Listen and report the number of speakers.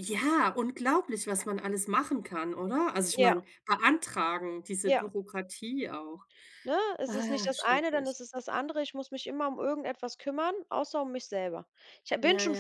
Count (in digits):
2